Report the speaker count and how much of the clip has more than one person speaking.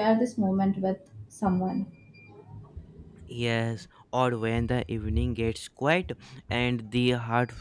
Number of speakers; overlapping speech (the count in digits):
2, no overlap